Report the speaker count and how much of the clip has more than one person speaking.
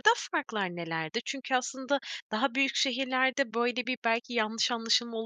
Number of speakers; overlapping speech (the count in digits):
1, no overlap